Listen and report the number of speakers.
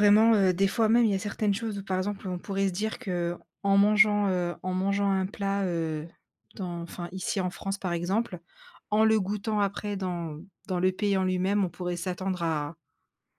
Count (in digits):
1